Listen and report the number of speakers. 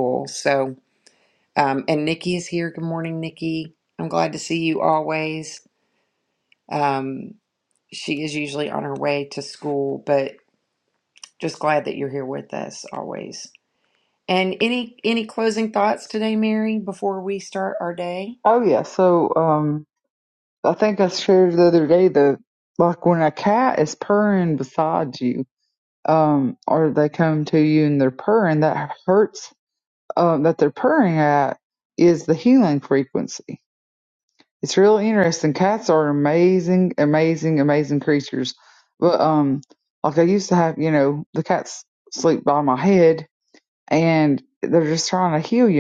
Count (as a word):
two